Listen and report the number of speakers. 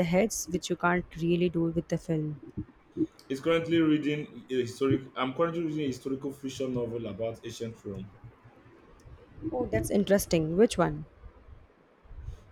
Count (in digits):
2